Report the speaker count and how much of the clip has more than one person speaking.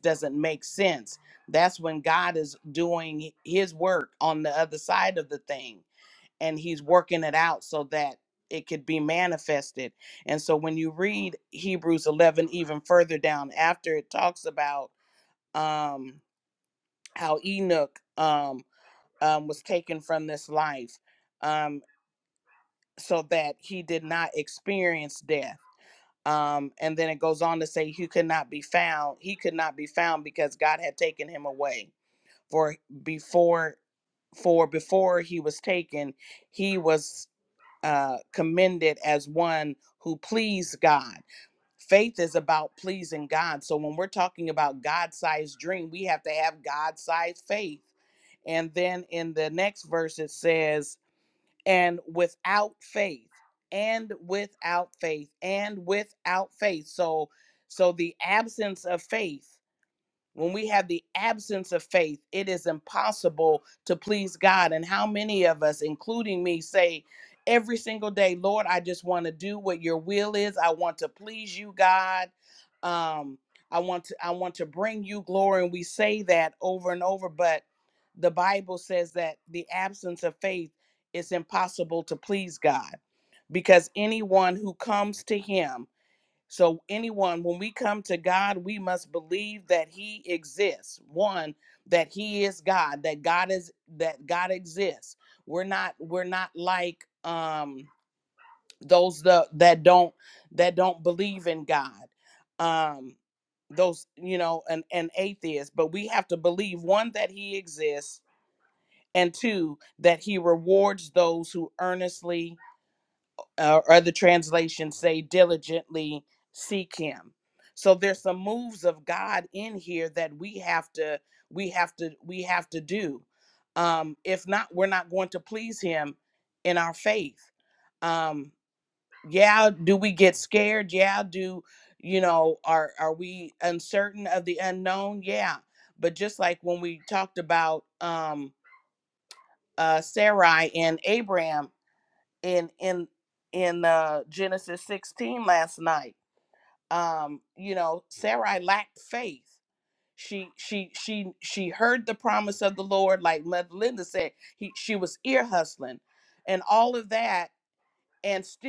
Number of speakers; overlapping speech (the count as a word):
one, no overlap